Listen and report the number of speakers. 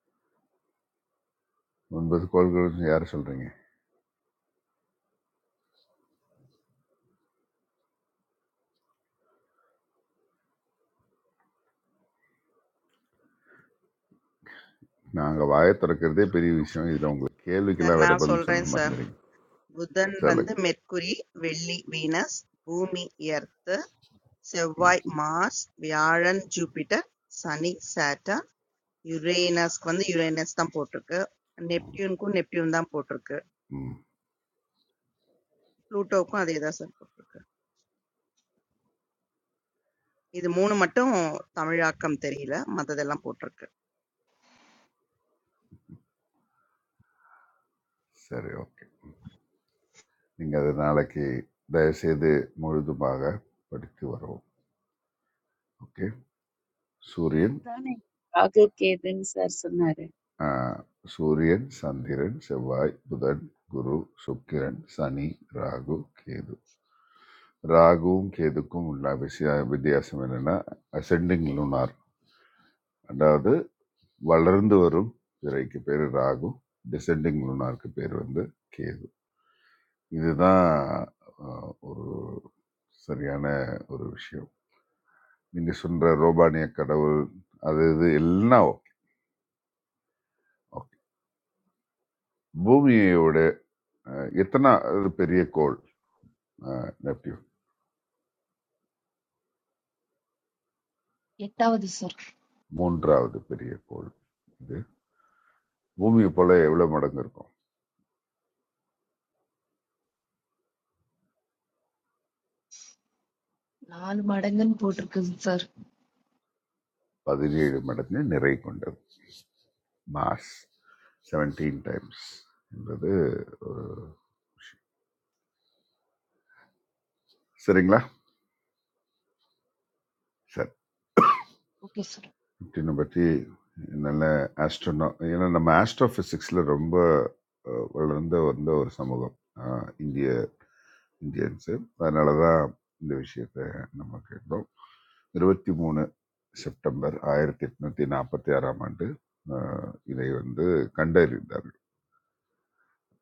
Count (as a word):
four